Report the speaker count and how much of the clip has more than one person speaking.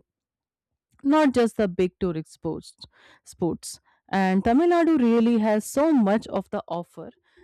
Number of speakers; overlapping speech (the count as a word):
one, no overlap